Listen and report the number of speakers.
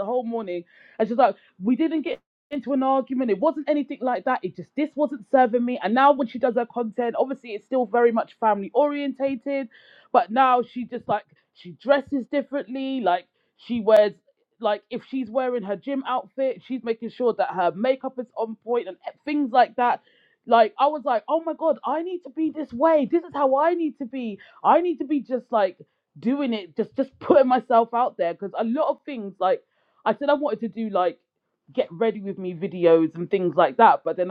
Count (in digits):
1